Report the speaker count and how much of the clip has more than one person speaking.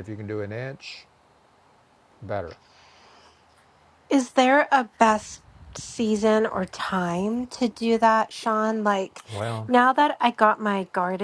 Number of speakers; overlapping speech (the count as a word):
two, no overlap